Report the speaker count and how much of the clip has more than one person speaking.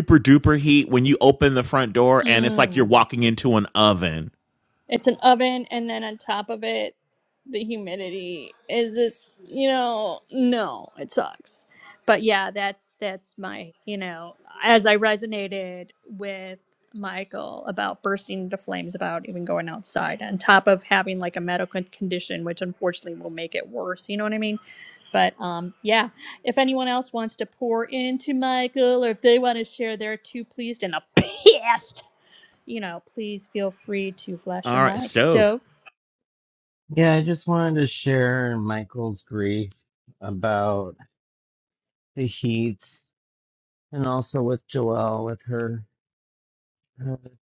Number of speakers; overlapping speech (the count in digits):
3, about 3%